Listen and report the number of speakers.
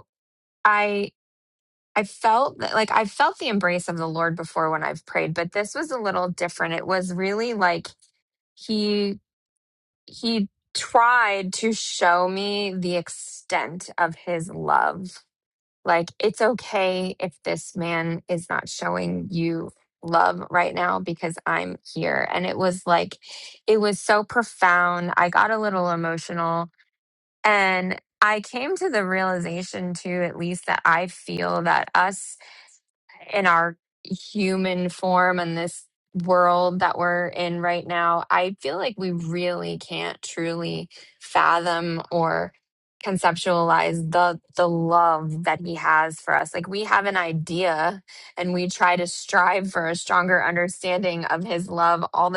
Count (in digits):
1